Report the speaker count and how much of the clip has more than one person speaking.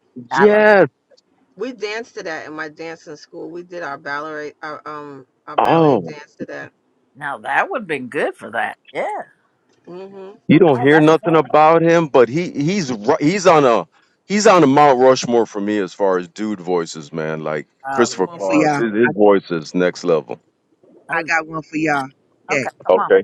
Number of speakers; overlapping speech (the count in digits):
4, about 14%